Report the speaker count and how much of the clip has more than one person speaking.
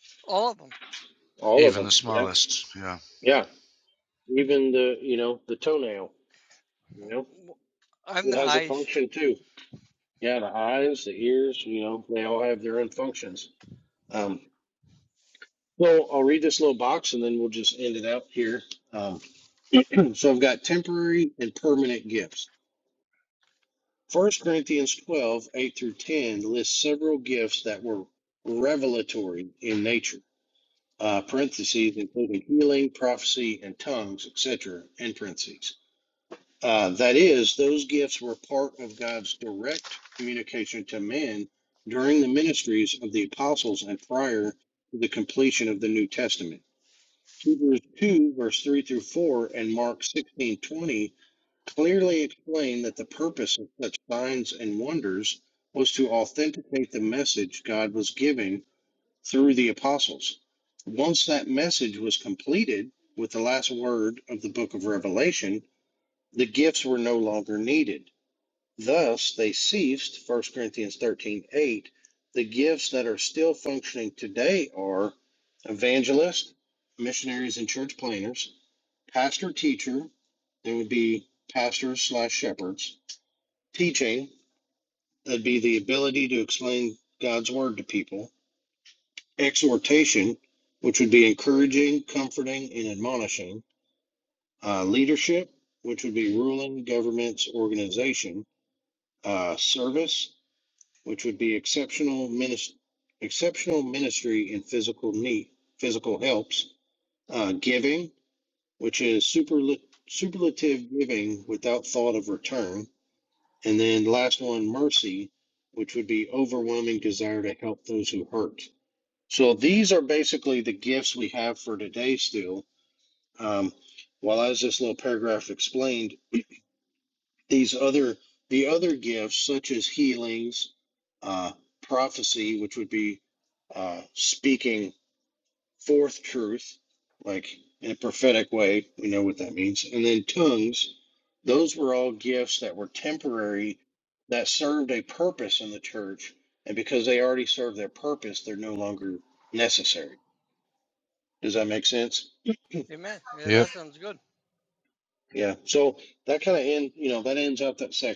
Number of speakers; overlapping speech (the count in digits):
3, about 1%